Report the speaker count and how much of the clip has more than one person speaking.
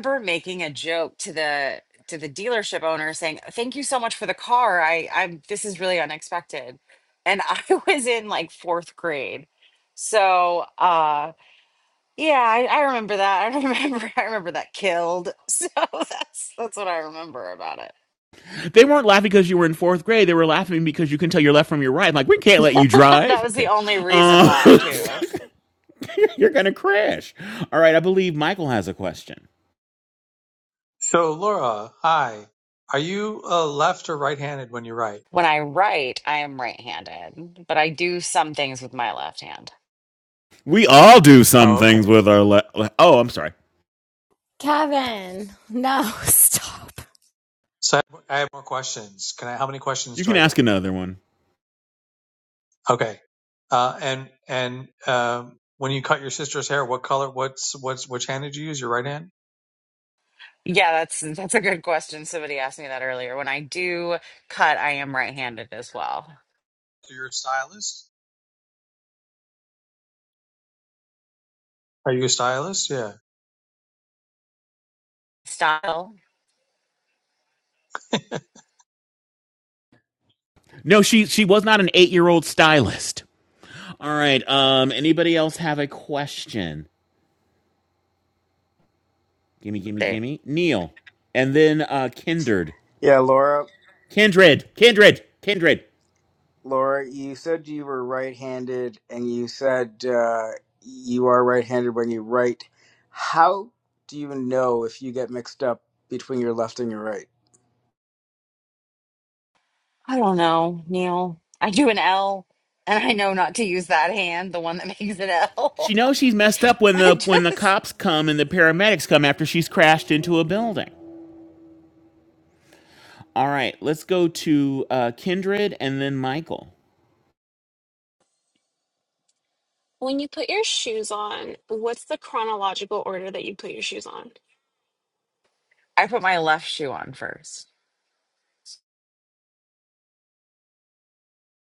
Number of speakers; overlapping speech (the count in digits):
6, about 2%